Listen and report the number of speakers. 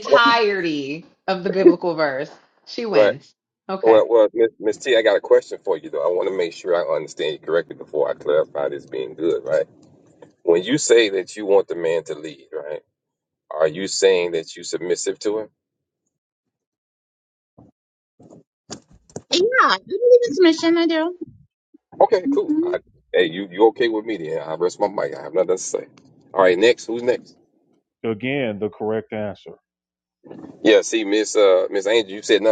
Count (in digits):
4